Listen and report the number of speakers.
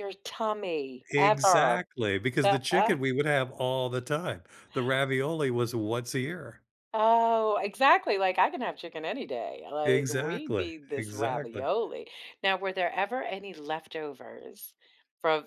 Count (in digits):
2